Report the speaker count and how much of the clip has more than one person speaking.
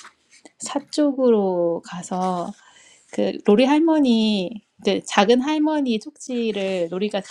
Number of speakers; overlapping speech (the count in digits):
1, no overlap